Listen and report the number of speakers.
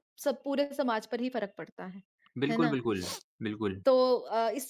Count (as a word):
two